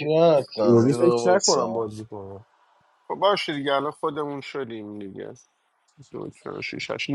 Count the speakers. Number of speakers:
3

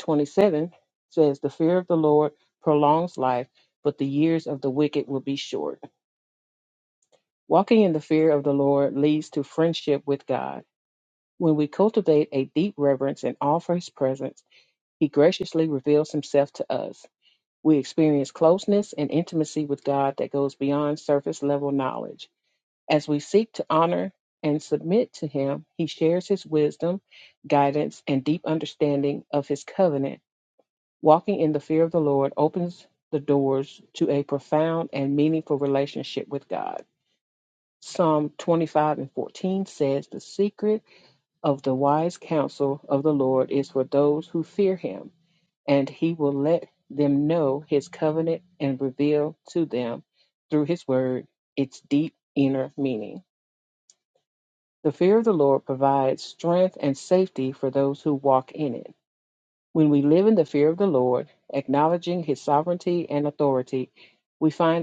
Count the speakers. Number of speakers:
1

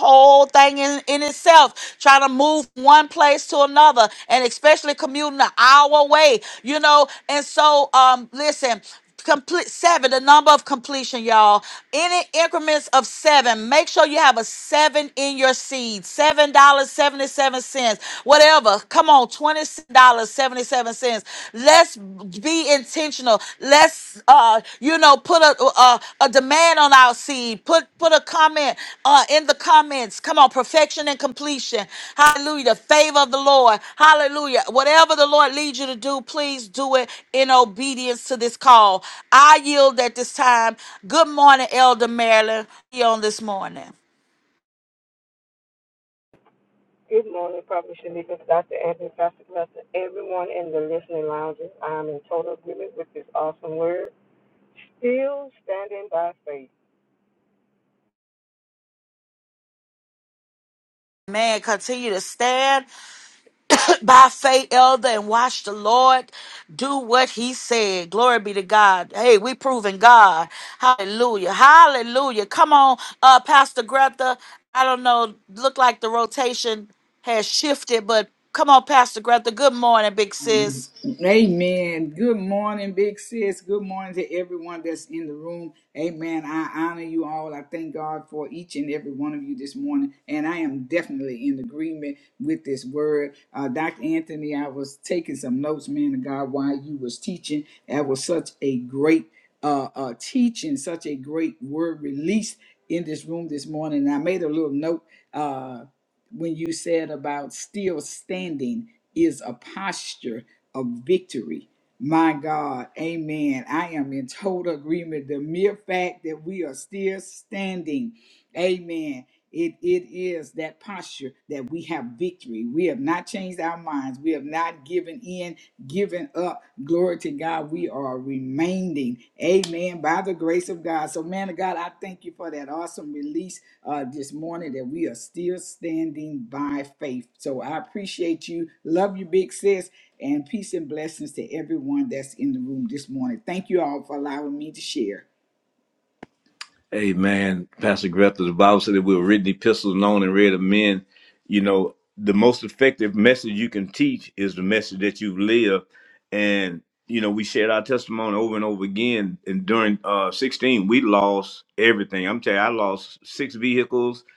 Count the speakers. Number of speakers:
4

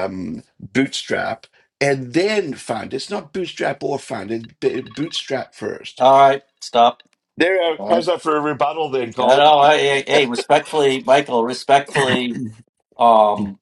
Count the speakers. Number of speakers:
2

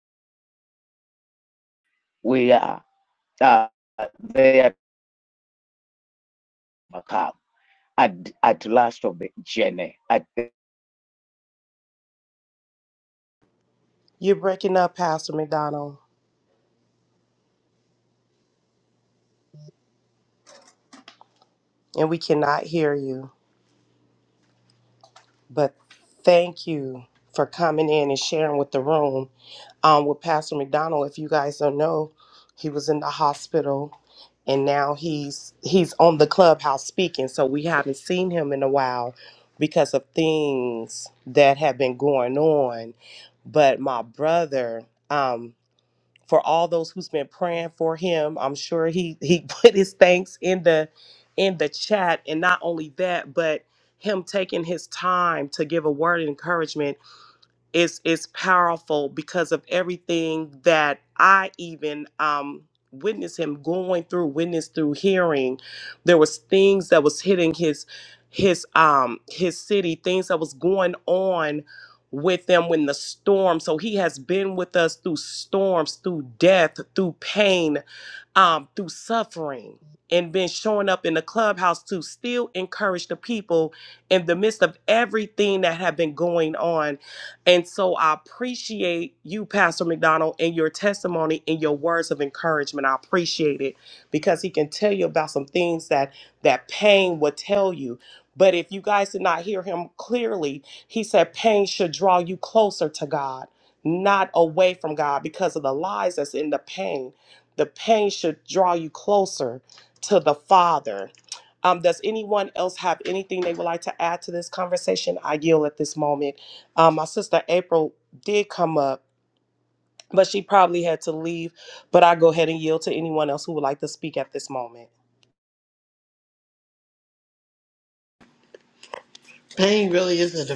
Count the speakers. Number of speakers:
3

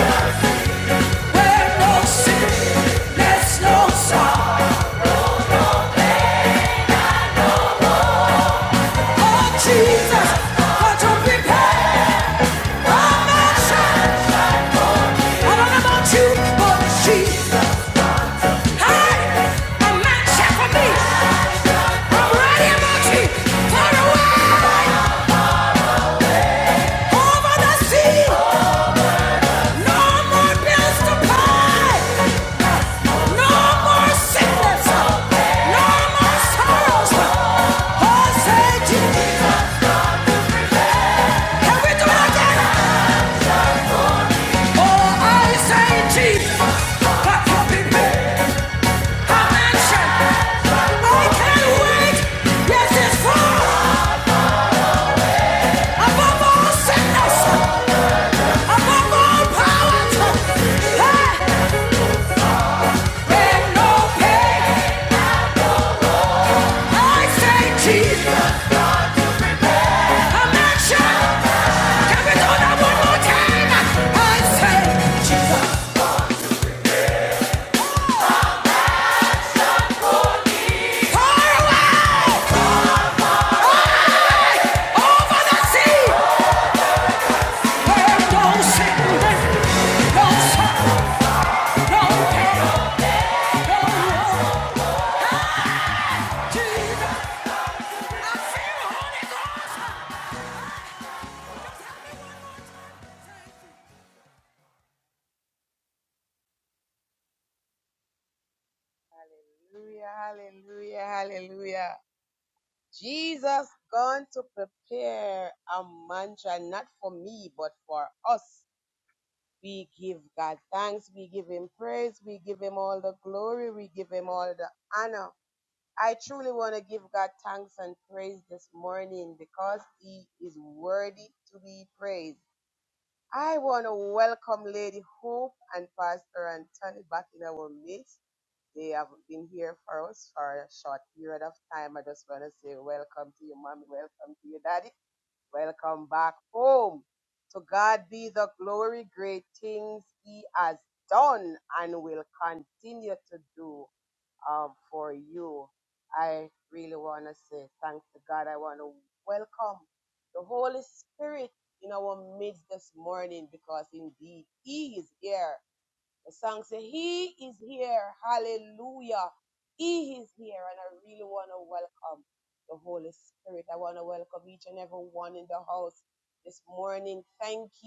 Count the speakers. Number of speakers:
2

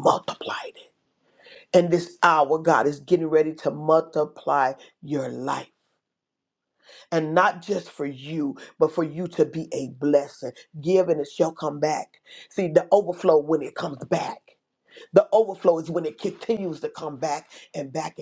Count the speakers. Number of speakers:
1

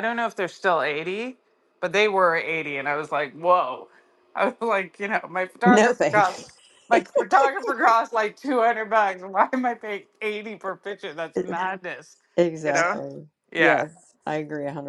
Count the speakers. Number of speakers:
2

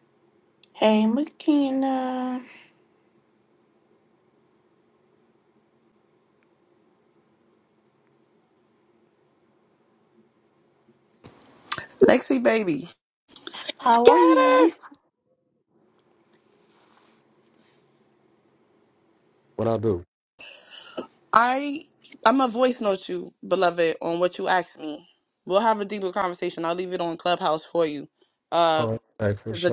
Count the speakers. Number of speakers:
3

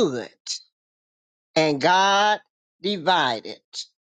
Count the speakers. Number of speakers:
1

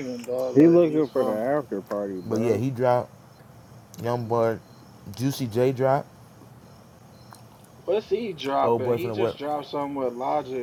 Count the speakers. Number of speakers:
3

